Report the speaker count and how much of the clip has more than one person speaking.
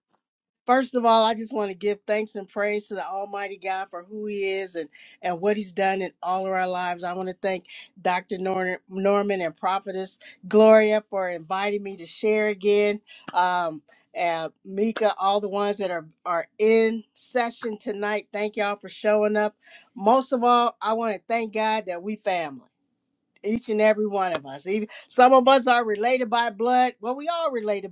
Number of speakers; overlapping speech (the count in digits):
1, no overlap